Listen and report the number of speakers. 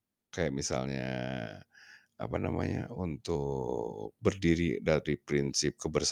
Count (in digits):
1